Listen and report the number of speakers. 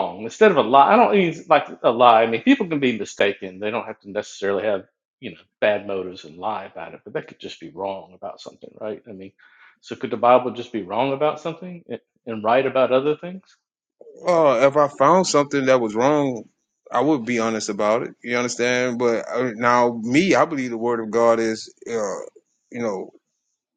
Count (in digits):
2